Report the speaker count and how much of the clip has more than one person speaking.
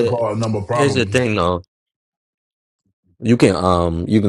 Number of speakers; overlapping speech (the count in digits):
2, about 16%